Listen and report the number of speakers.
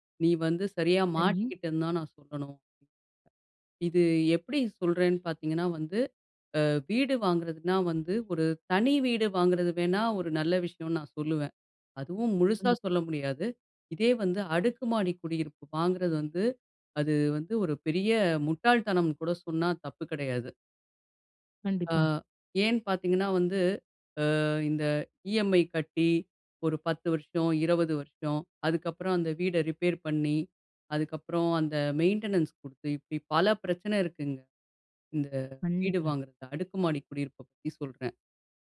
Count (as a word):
two